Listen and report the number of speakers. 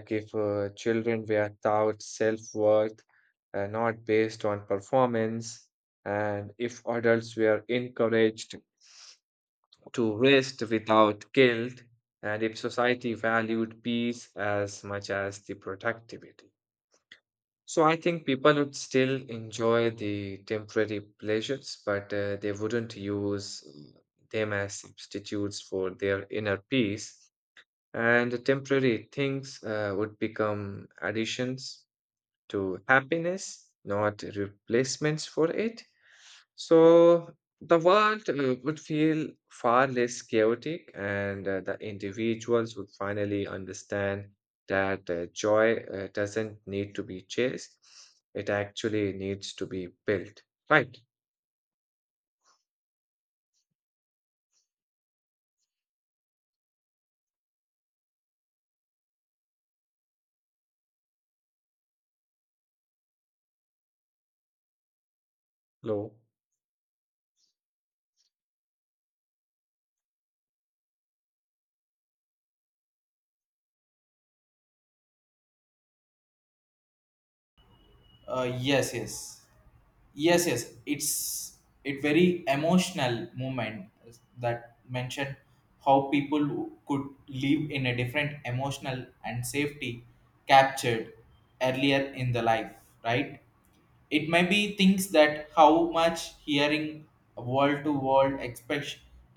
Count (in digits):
2